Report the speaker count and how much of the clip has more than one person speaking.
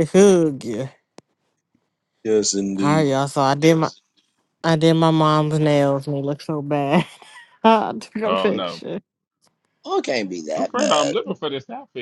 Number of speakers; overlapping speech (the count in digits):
3, about 12%